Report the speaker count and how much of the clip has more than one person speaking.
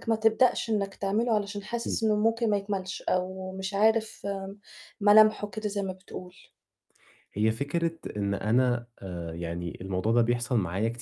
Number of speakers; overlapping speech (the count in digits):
2, about 1%